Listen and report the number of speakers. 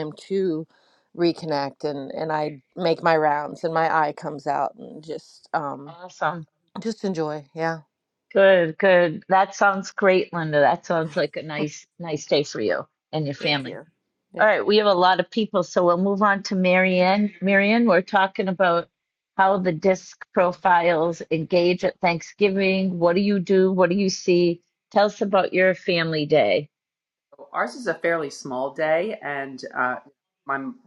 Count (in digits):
3